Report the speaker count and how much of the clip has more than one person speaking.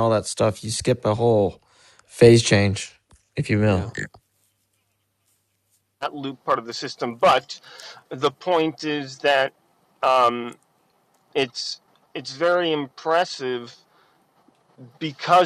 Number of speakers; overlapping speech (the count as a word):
two, no overlap